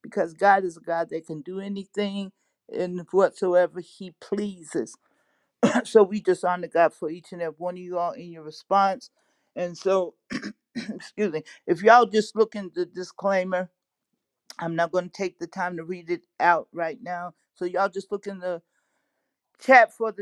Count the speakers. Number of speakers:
one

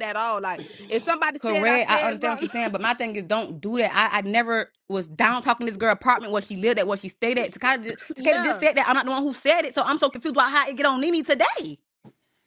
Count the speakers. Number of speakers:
two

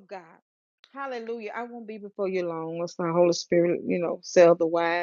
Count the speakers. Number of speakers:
one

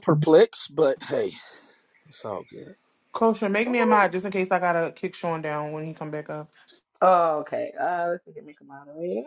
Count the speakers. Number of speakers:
three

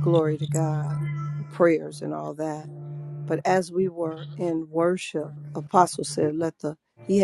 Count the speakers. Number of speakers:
one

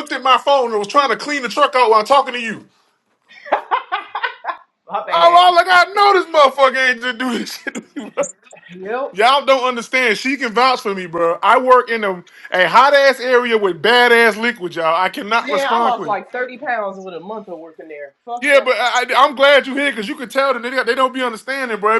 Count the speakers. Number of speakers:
two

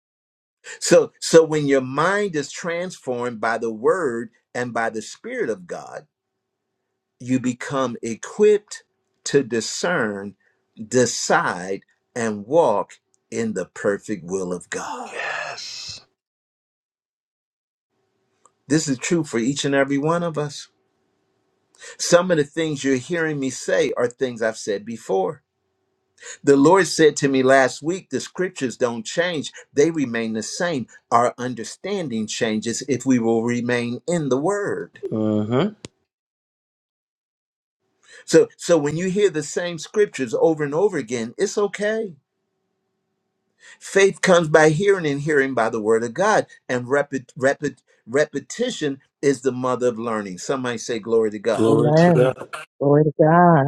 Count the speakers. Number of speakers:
three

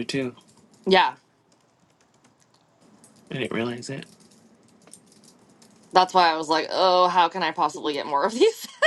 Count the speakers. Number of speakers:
two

